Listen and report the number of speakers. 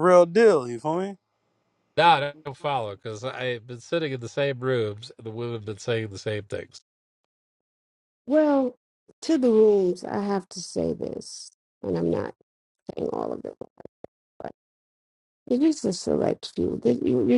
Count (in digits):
3